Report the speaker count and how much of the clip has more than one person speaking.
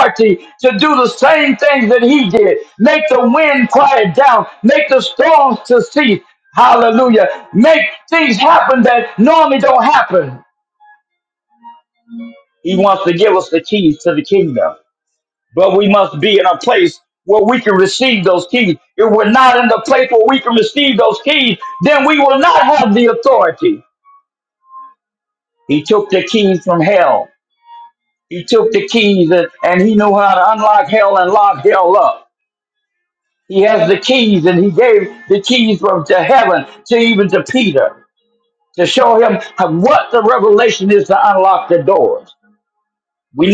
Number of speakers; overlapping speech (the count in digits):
1, no overlap